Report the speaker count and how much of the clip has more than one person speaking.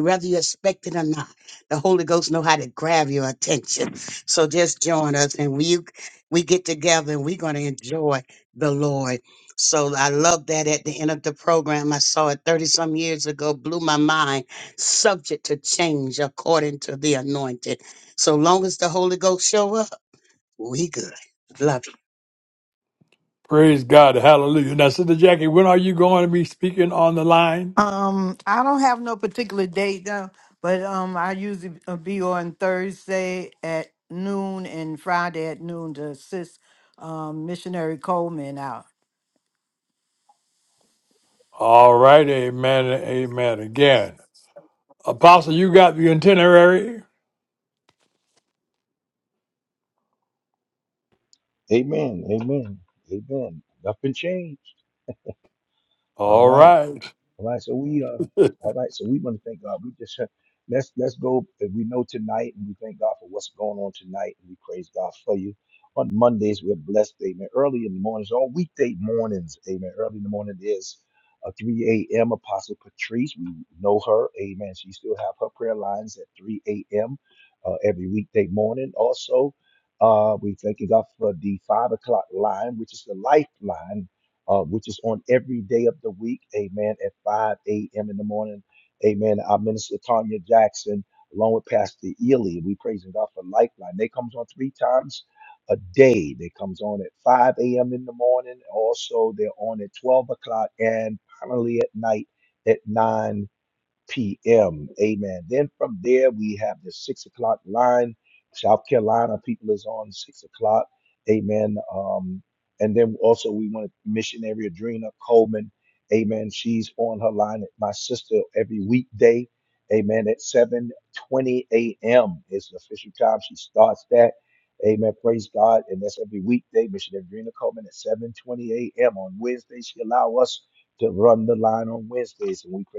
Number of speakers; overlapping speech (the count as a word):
four, under 1%